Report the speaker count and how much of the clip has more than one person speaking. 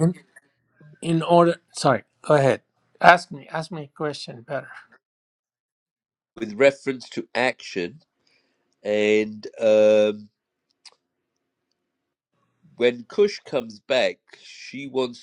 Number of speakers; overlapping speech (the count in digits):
2, no overlap